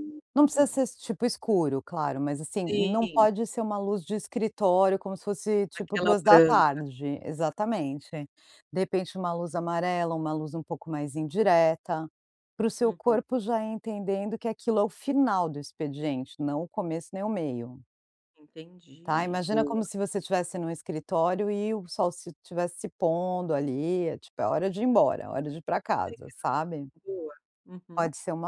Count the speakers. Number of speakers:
2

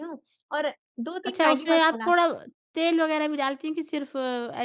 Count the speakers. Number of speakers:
2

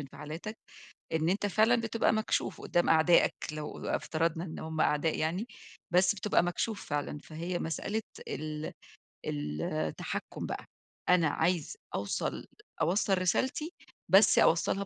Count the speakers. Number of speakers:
1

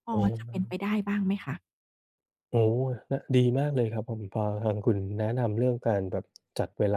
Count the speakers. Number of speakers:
2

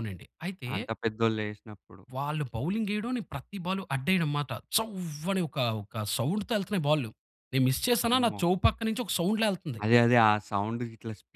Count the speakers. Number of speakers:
2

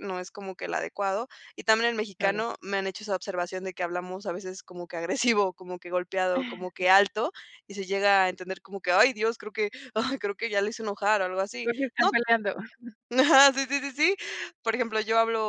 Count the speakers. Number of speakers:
2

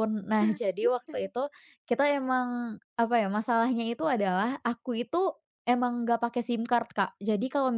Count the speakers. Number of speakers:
1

